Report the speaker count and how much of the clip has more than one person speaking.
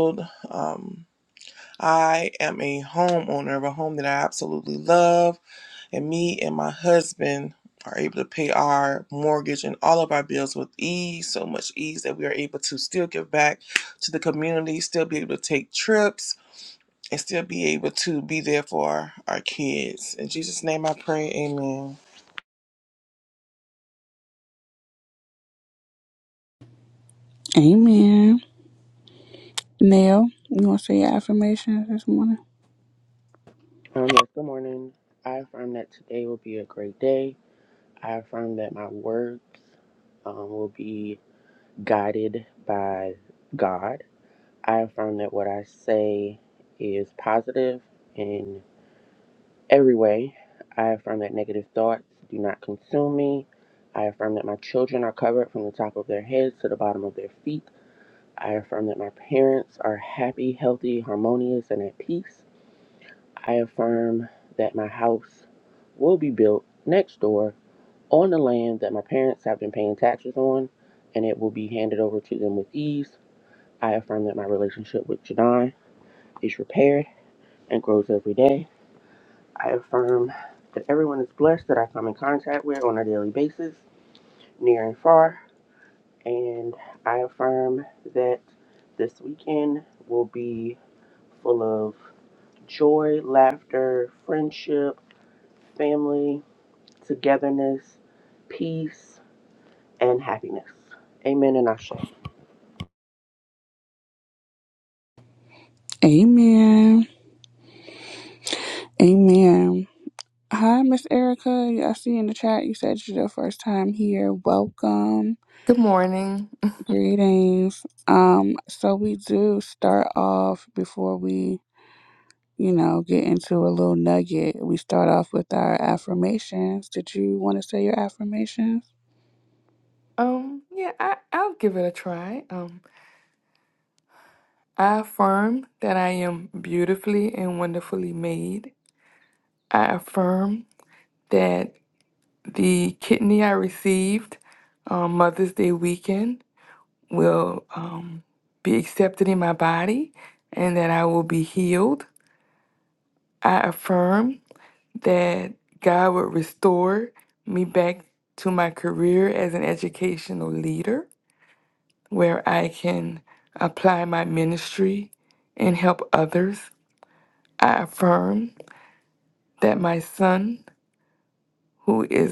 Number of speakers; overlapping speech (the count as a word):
four, no overlap